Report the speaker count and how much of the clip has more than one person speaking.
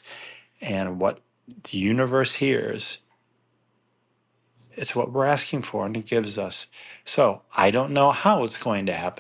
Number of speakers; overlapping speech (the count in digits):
1, no overlap